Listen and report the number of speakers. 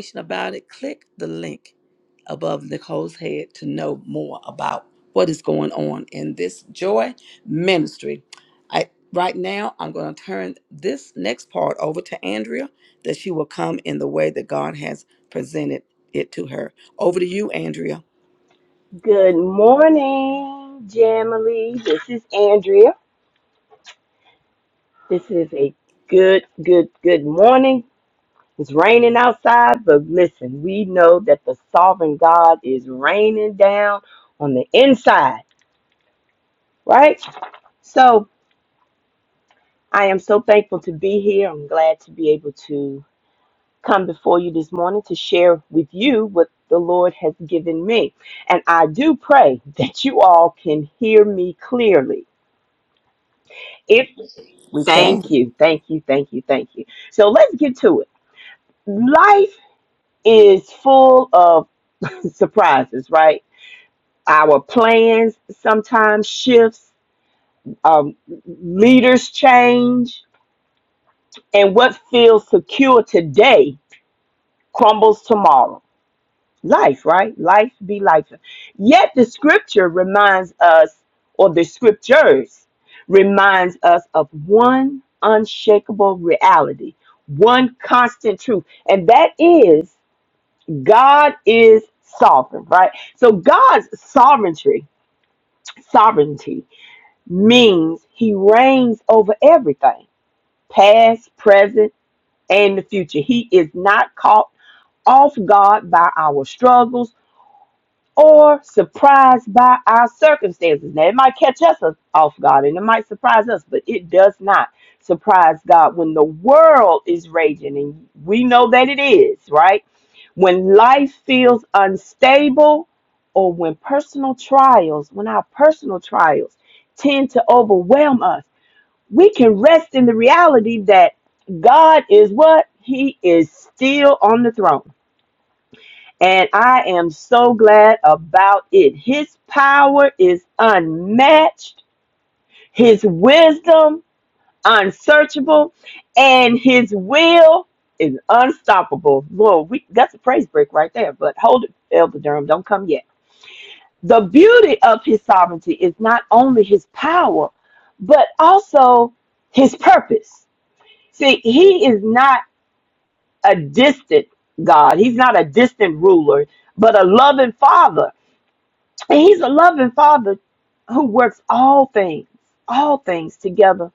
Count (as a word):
two